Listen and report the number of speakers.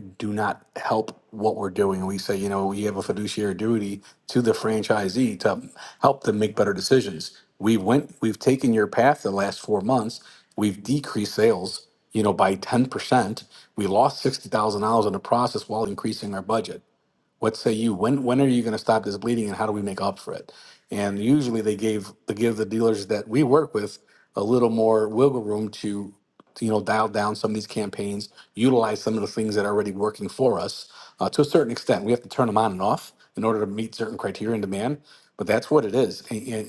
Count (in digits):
1